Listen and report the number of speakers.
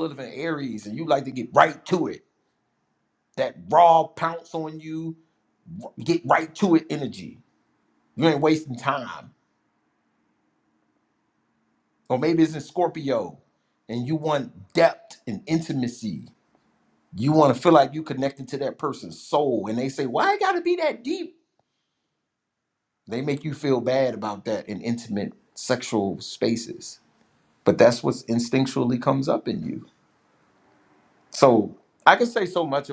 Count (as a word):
one